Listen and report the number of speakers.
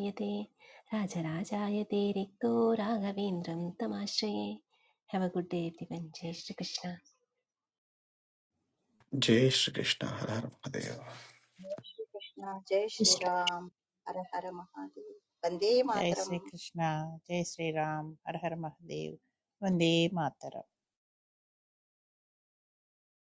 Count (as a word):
four